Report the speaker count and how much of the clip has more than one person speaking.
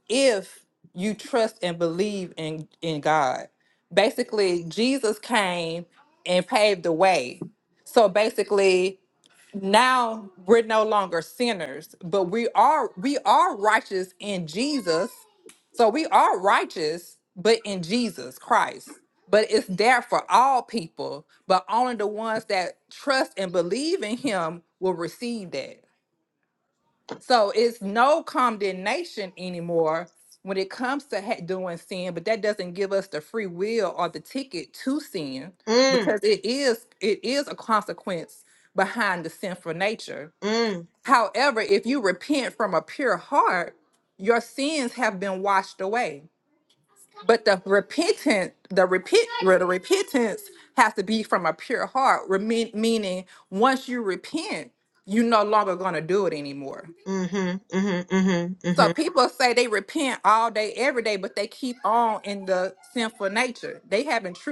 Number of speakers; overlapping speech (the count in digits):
2, about 1%